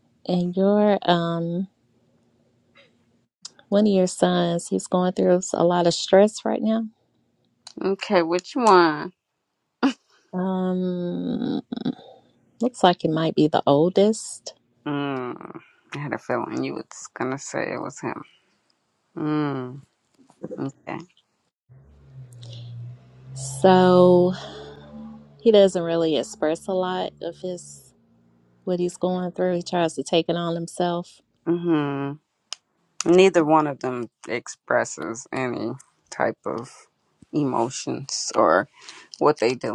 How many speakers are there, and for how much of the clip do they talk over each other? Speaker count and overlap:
2, no overlap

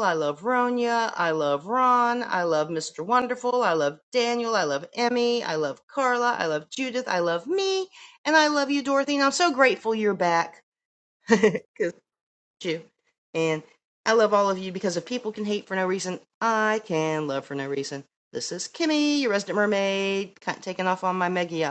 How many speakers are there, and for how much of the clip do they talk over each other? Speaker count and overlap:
1, no overlap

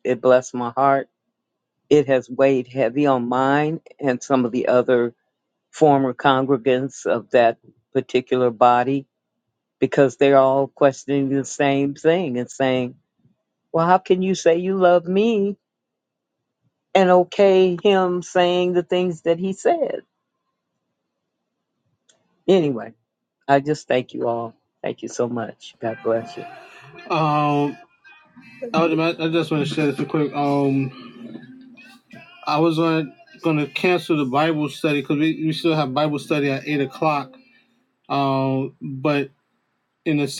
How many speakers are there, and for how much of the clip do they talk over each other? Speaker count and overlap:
2, no overlap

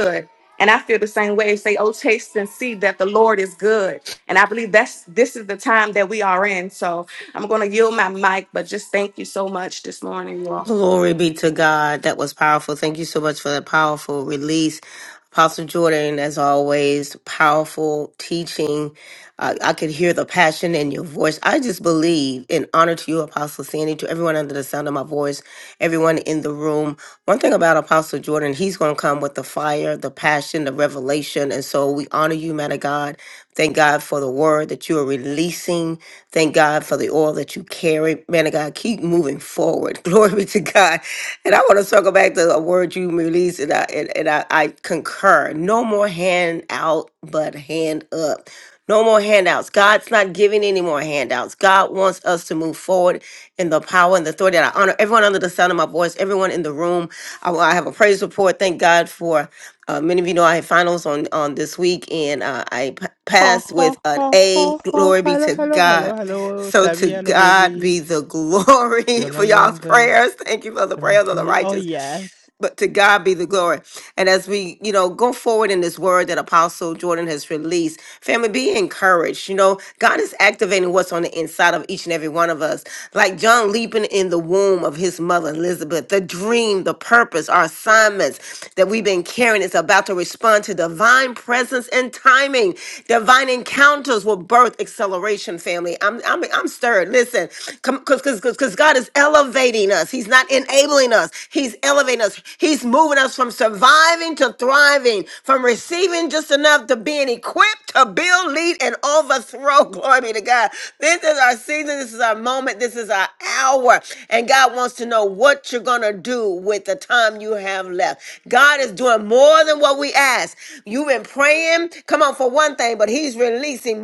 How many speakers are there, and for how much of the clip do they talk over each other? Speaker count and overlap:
3, about 4%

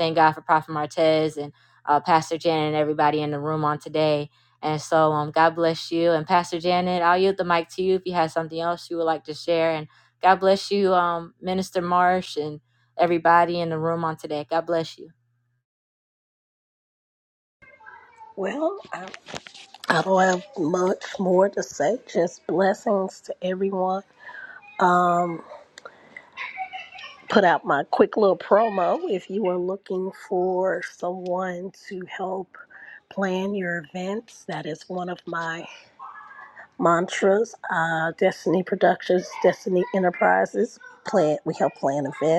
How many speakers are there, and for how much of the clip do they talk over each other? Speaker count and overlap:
2, no overlap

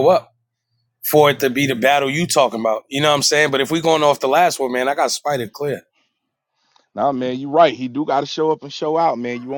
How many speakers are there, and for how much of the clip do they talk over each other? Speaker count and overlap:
2, about 1%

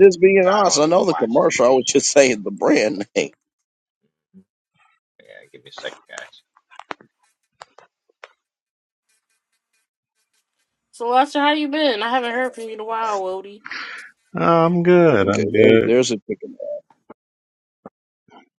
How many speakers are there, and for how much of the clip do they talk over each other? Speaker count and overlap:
4, about 11%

